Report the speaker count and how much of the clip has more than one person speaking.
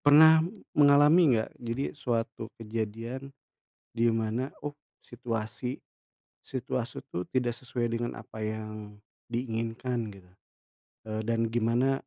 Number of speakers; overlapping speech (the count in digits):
1, no overlap